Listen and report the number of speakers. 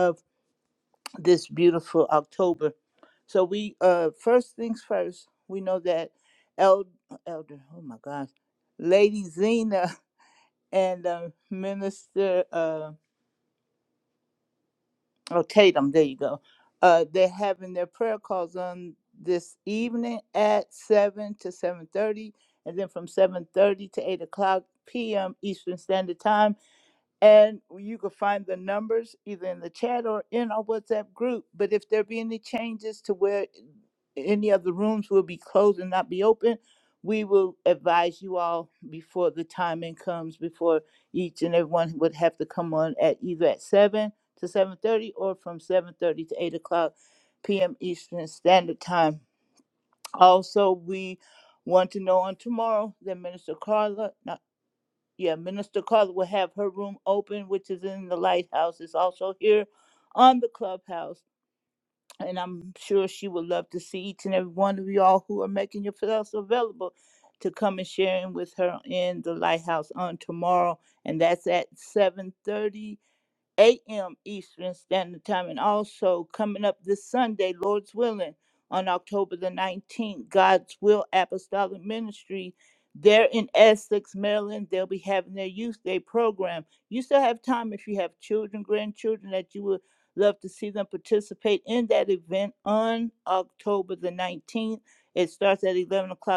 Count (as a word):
one